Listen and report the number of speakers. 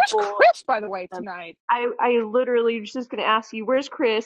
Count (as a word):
two